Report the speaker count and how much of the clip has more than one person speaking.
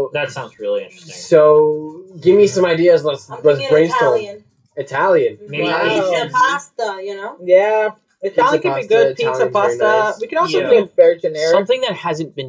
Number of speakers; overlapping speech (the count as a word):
five, about 46%